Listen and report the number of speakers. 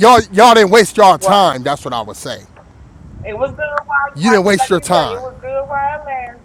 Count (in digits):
2